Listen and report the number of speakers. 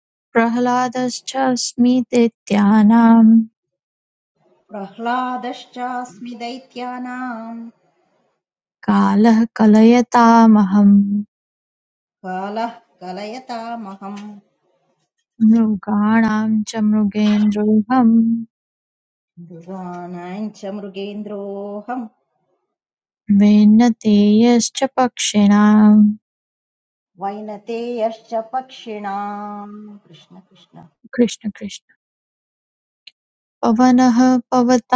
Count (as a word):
two